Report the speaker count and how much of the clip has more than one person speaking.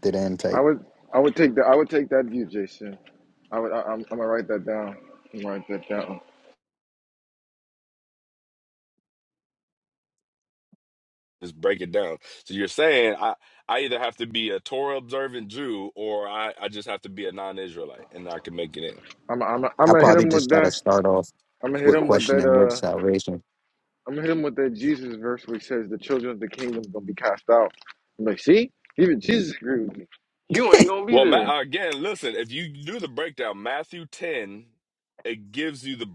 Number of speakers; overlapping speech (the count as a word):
three, about 7%